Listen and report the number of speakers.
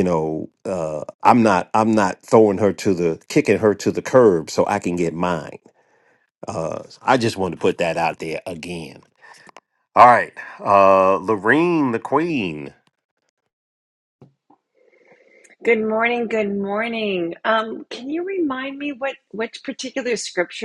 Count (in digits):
2